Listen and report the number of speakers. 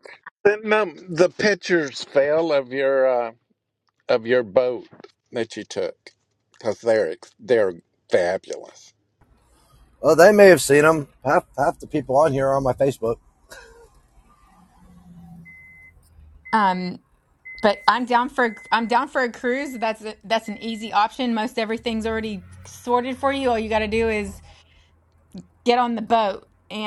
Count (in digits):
3